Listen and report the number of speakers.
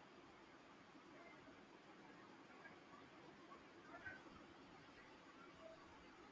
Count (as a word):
zero